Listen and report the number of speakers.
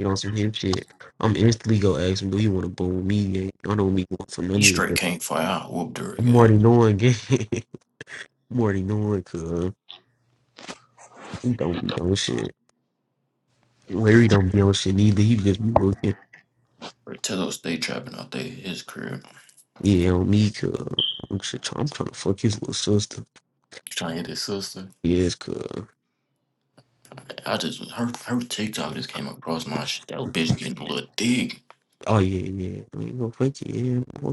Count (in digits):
2